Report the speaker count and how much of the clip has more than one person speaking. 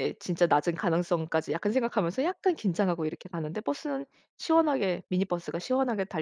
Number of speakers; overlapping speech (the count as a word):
one, no overlap